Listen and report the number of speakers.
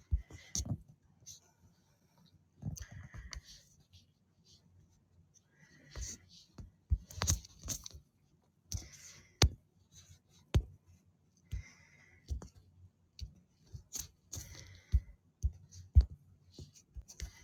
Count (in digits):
0